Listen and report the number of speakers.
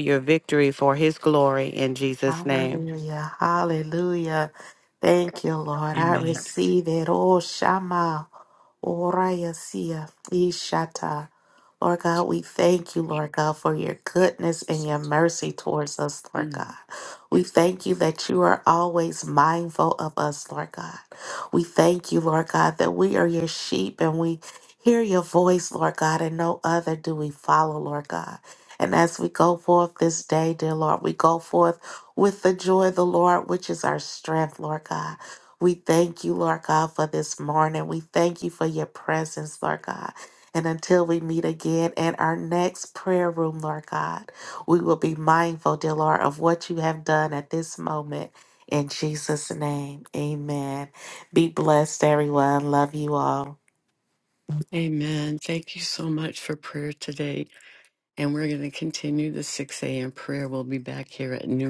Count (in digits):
3